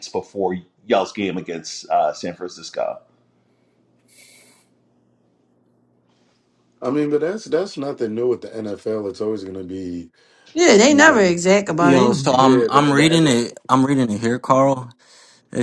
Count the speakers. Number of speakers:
four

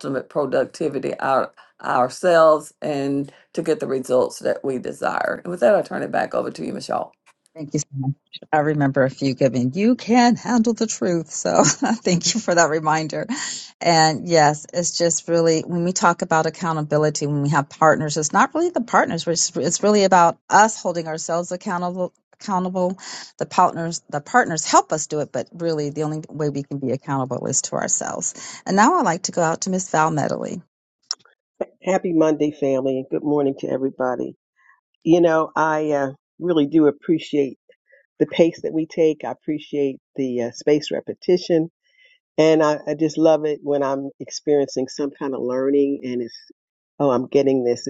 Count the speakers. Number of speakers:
three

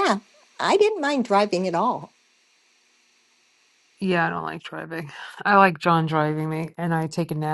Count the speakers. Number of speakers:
two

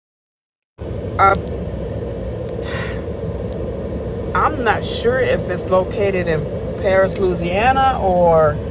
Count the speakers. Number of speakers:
one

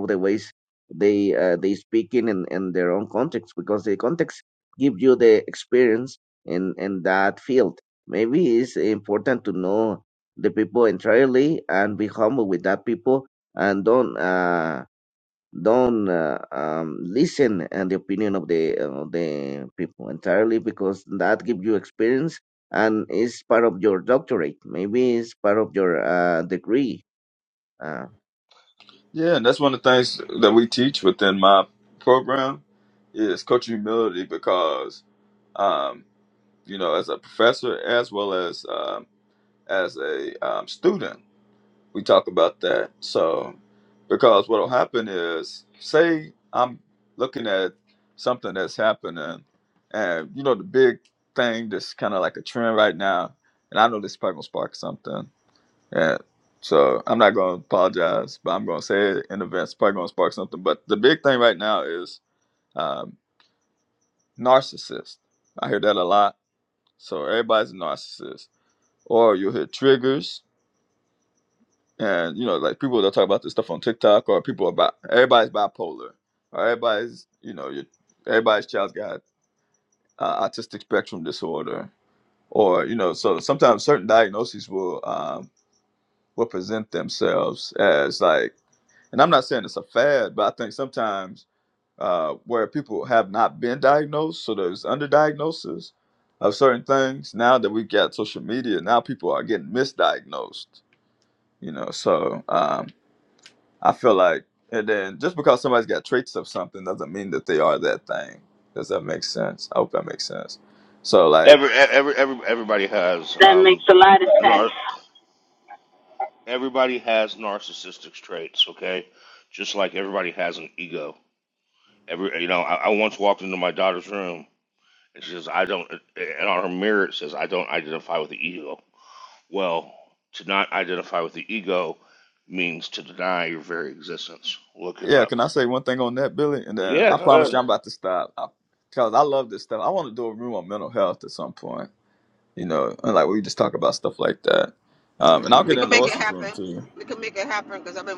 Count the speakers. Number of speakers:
four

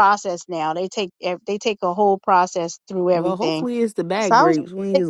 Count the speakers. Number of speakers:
two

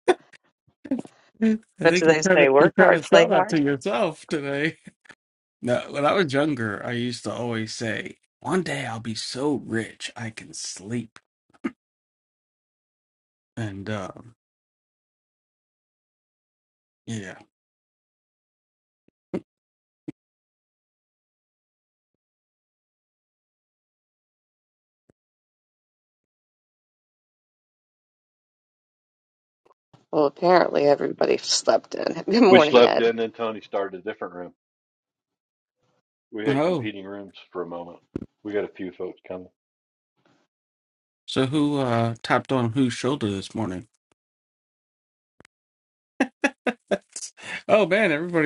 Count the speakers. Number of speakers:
three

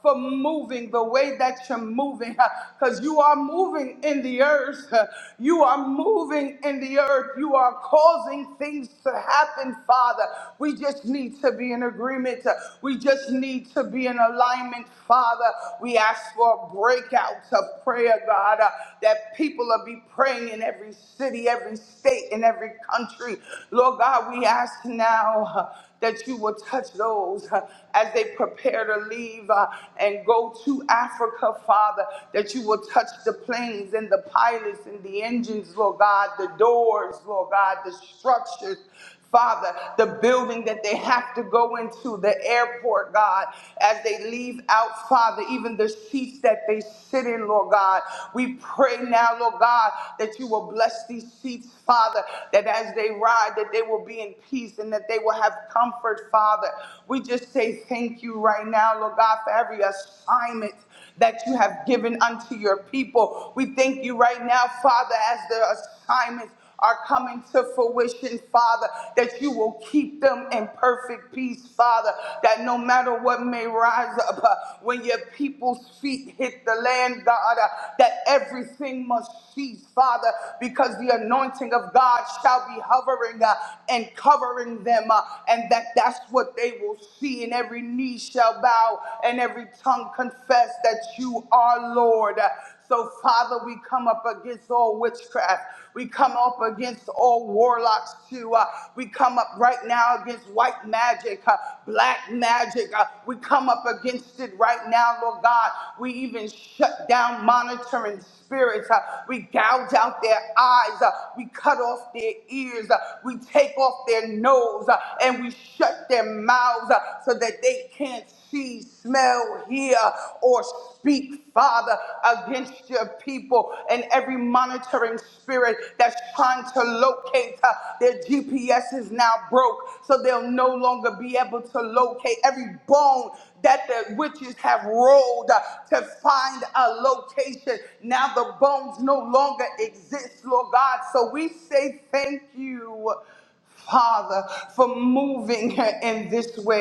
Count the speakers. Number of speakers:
one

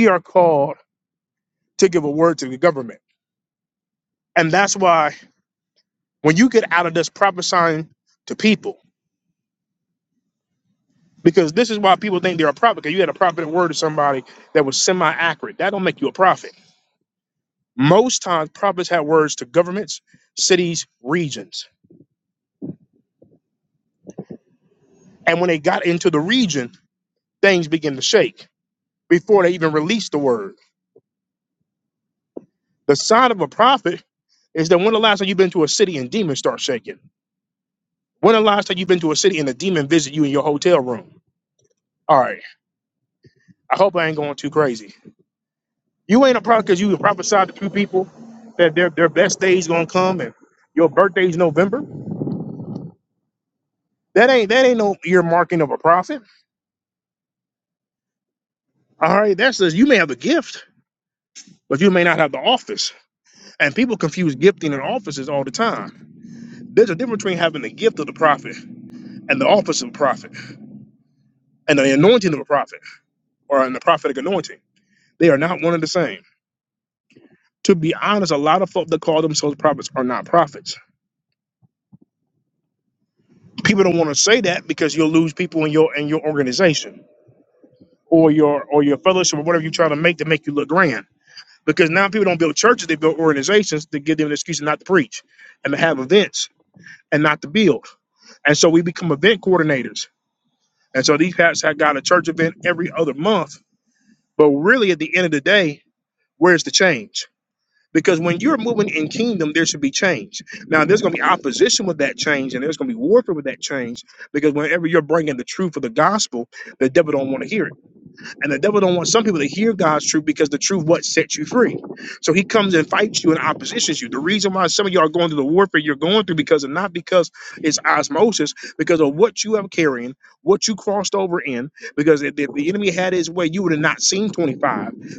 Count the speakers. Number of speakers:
one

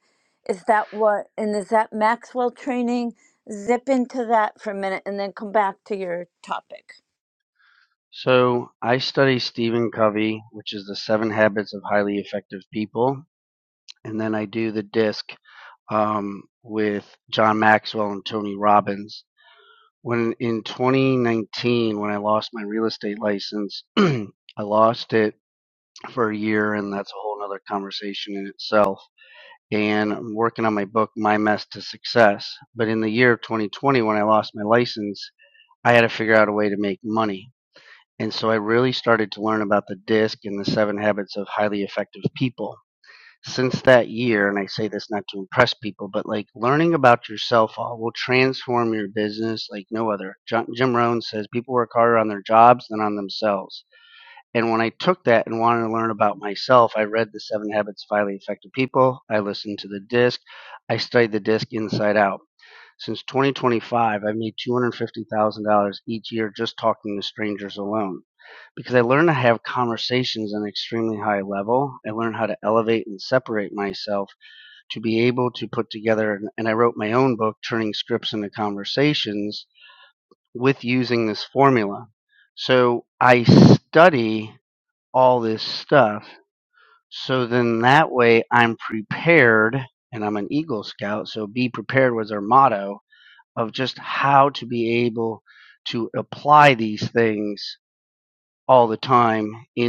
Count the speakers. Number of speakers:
two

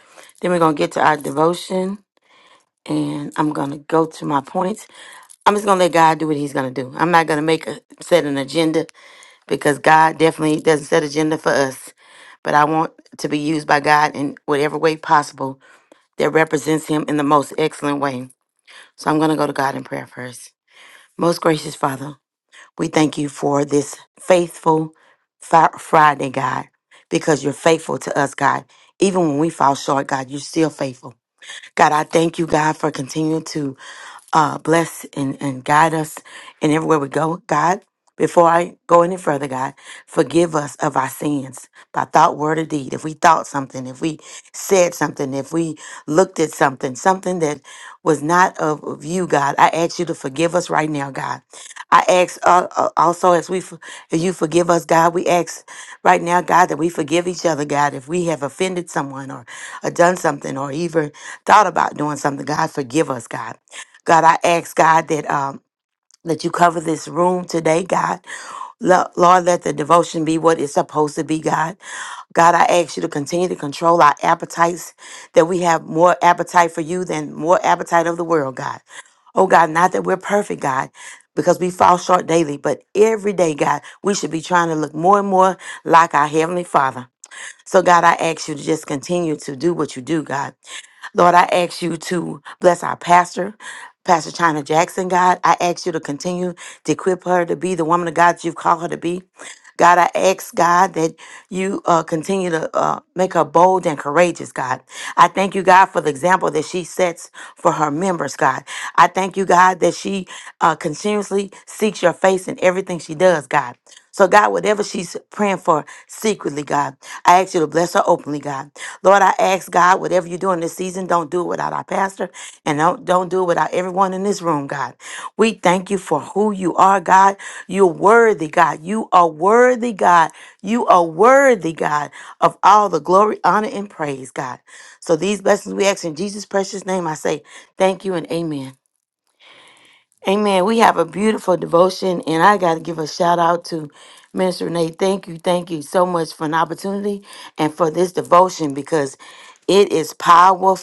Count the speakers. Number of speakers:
one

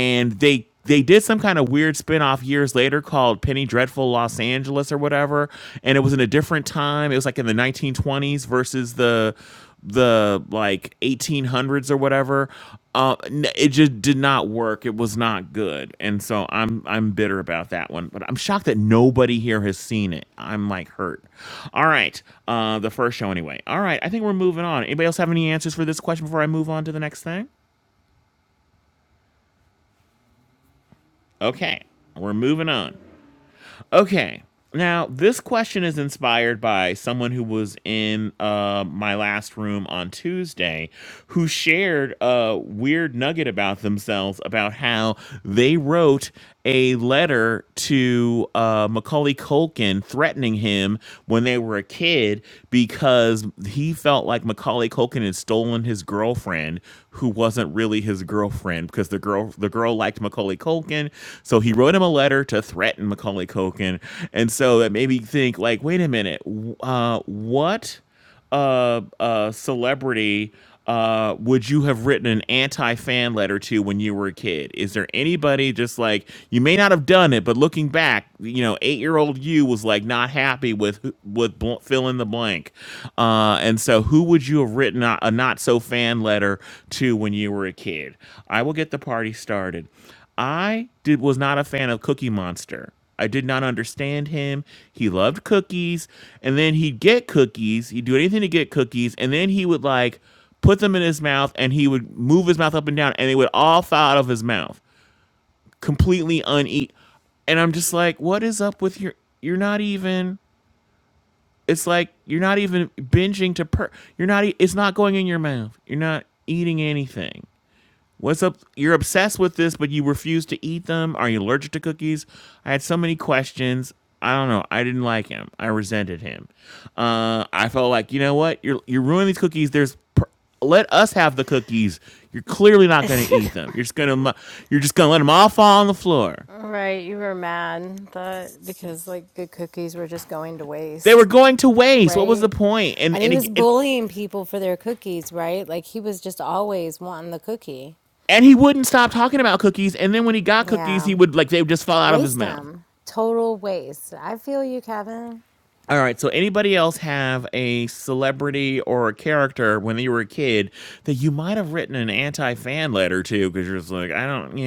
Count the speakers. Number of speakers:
two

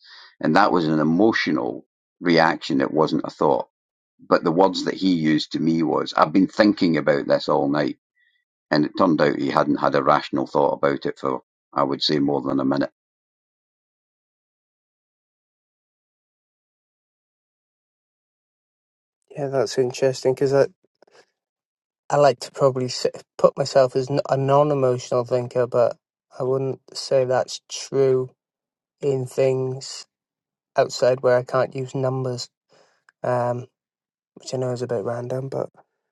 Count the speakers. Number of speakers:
two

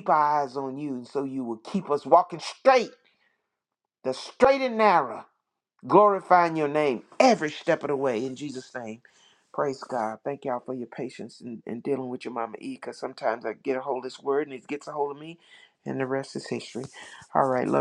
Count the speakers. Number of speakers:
one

